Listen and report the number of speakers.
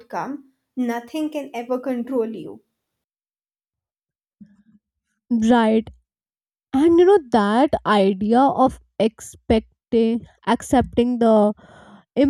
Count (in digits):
2